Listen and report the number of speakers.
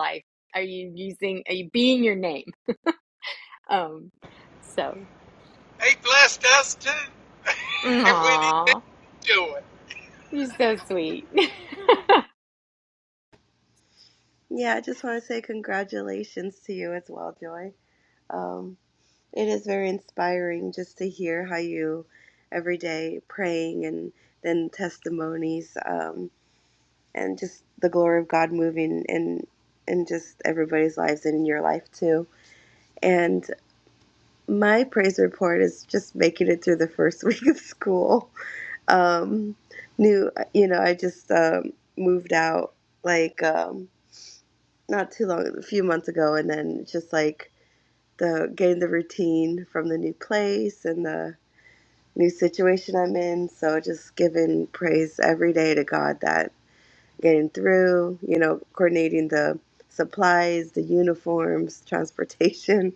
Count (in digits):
3